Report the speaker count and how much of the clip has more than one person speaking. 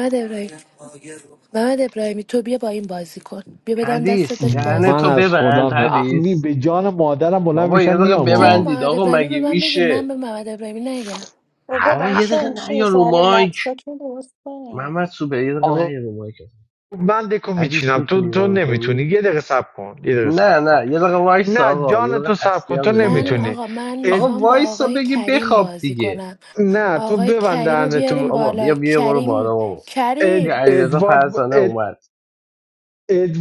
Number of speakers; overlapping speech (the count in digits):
4, about 53%